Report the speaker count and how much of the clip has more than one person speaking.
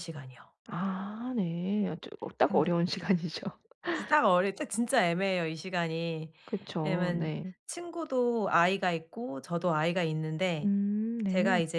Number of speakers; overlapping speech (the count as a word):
two, about 8%